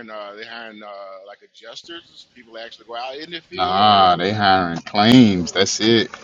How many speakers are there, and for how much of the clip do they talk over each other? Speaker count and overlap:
2, about 17%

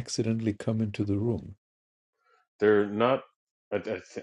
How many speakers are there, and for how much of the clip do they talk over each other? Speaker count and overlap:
2, no overlap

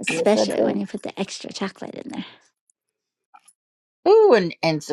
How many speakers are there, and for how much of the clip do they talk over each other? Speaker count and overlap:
2, about 14%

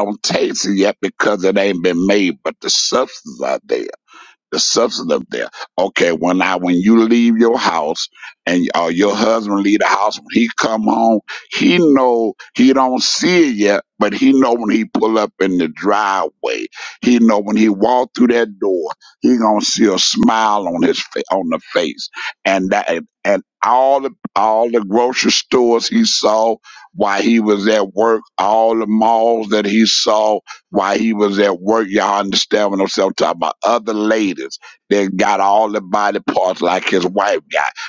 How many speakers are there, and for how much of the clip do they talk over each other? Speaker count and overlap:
1, no overlap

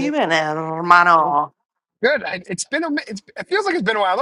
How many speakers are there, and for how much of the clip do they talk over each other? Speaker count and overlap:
2, about 3%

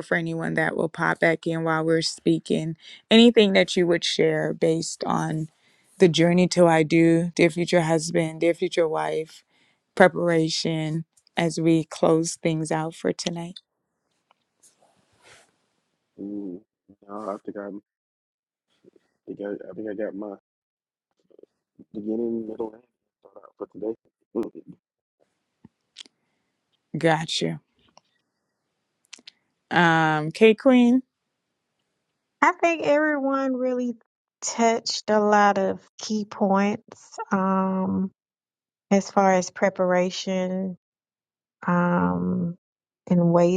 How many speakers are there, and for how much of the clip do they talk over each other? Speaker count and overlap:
3, no overlap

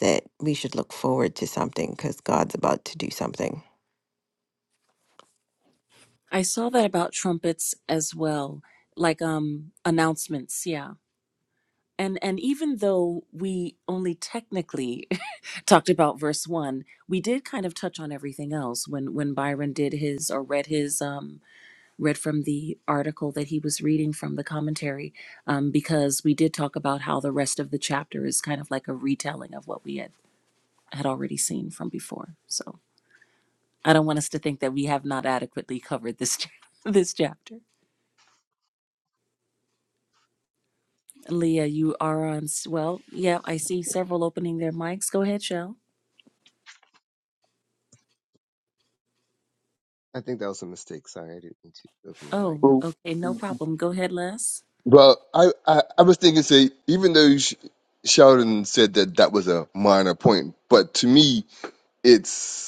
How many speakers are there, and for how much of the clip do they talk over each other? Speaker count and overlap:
4, about 1%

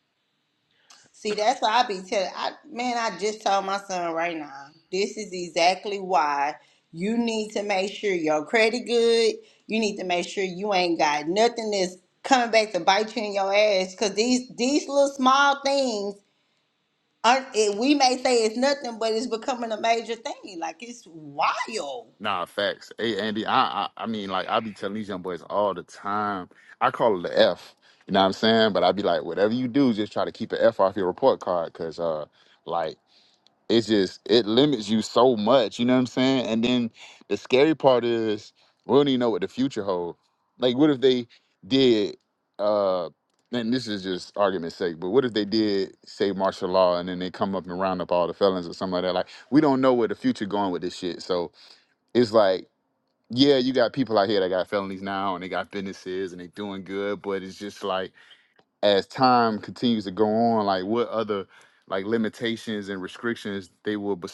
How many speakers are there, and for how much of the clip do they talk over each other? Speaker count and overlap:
2, no overlap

